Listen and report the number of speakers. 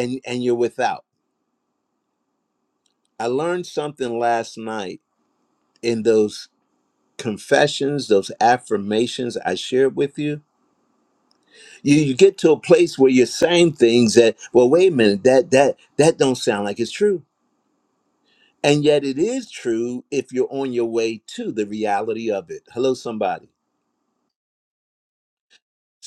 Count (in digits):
1